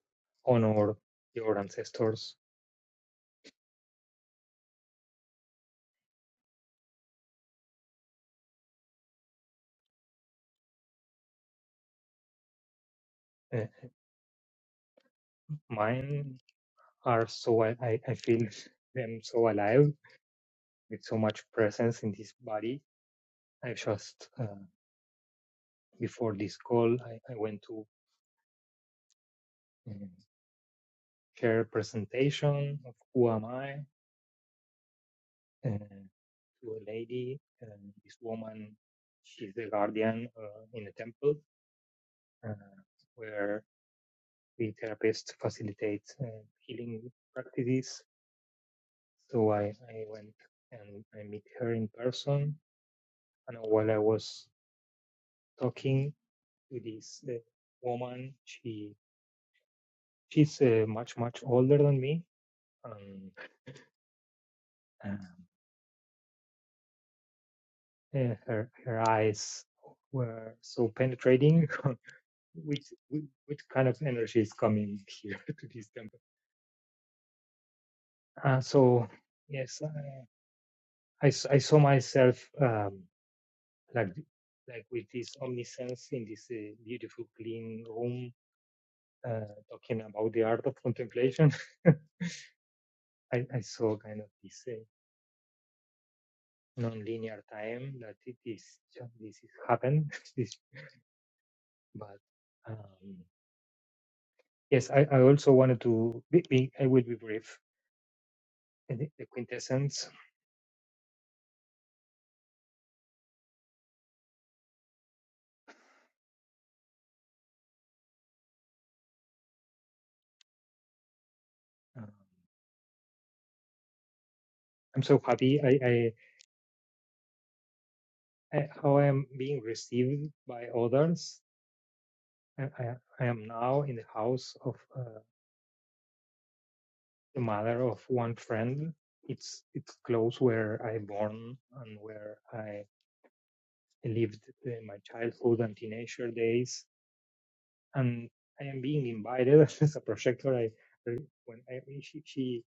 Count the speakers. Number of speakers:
one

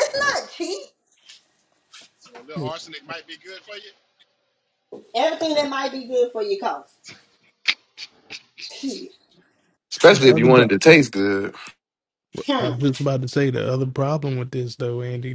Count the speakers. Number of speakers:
four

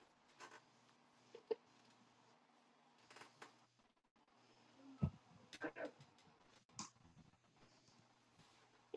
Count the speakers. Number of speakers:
zero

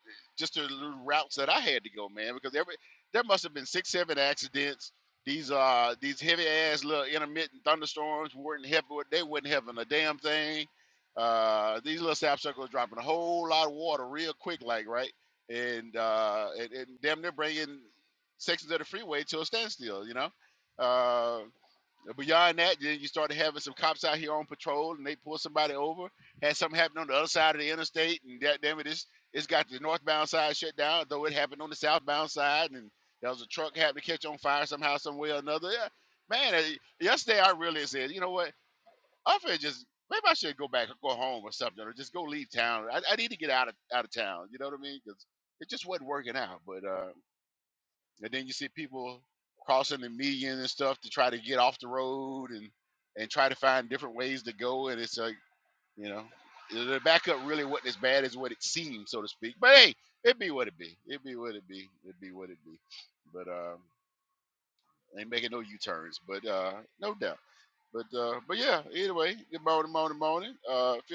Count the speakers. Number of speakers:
one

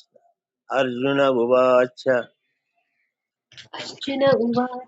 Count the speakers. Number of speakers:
two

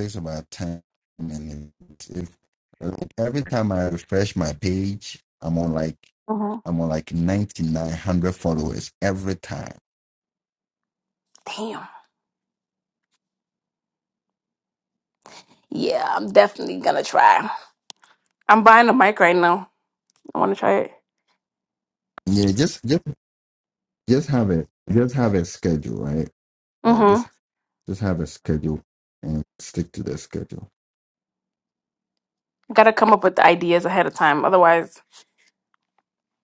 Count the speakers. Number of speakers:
two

